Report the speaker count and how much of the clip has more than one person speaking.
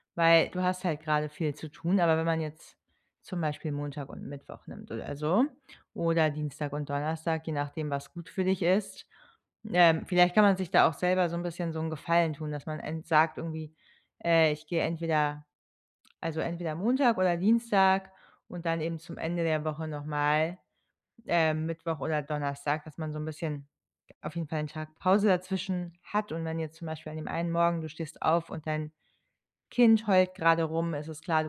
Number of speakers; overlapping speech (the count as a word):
one, no overlap